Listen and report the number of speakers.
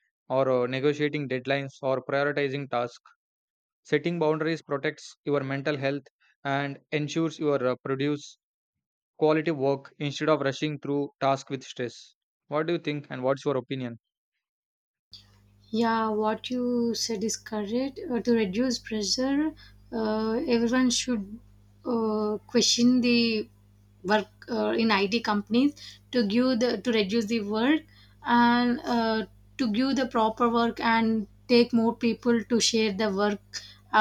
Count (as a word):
two